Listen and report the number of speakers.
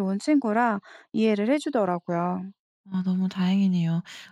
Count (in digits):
2